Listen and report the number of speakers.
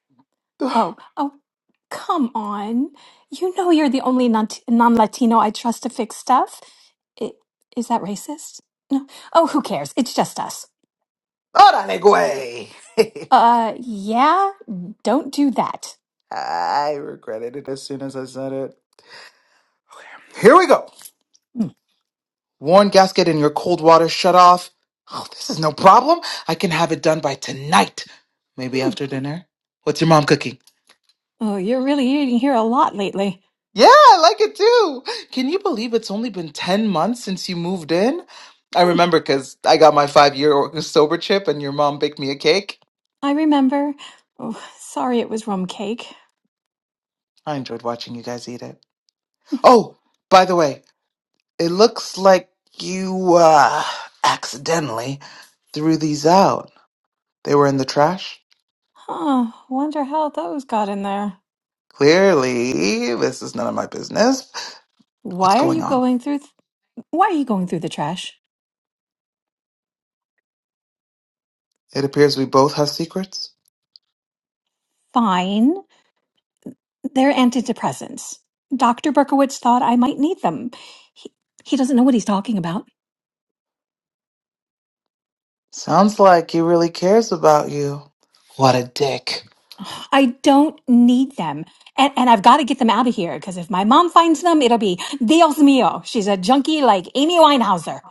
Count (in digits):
2